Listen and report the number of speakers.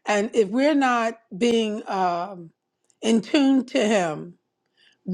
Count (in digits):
1